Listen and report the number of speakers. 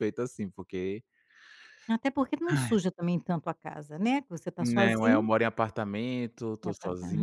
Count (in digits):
2